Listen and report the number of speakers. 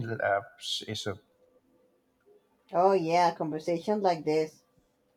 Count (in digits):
2